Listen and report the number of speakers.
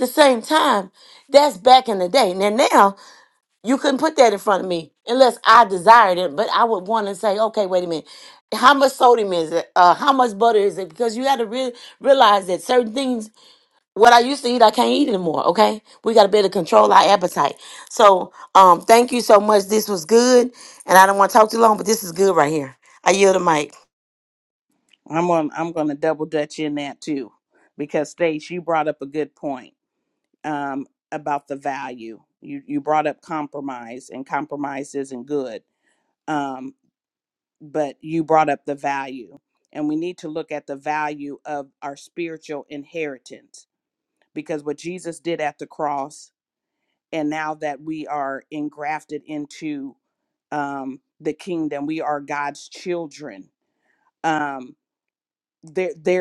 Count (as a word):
two